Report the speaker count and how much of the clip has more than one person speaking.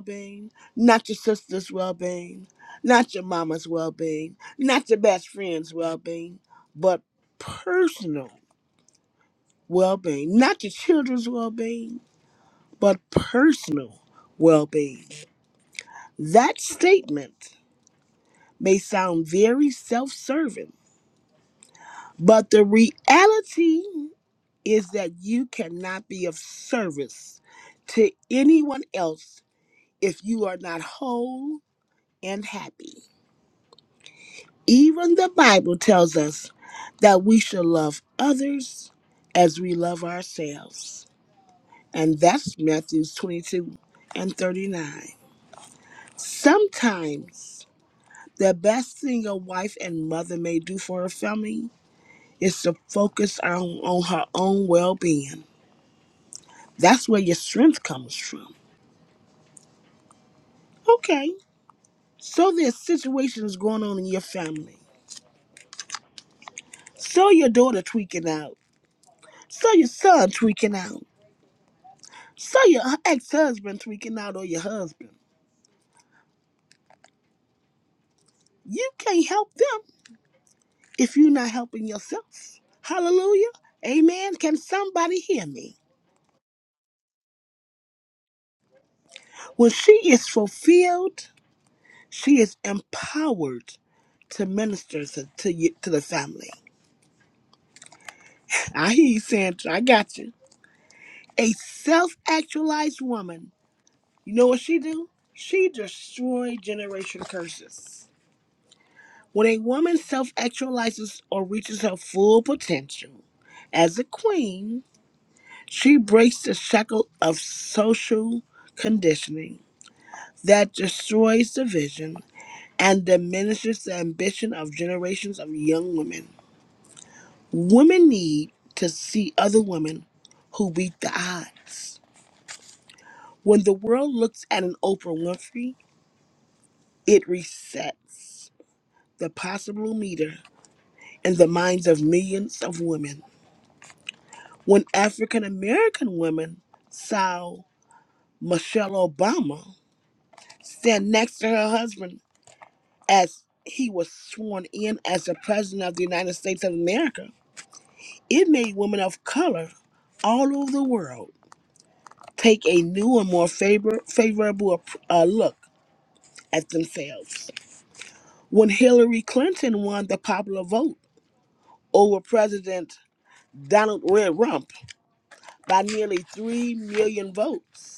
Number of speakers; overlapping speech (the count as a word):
one, no overlap